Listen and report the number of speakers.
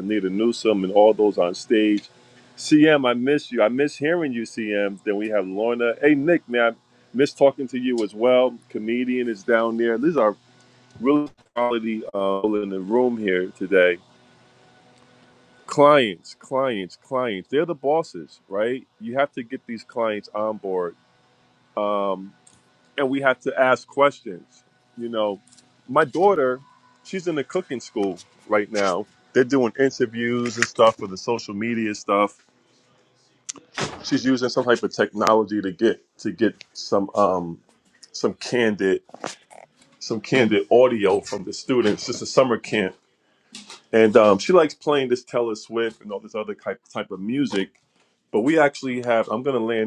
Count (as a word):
one